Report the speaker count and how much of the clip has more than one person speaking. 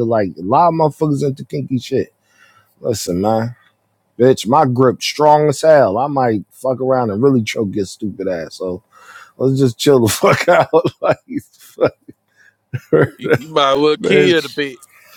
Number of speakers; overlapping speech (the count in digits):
2, about 3%